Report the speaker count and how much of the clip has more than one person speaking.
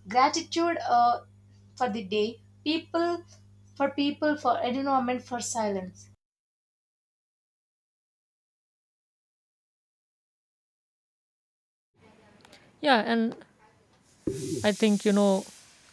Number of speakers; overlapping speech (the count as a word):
two, no overlap